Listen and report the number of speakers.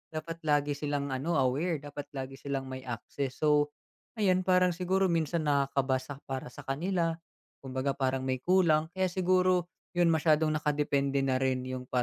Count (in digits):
1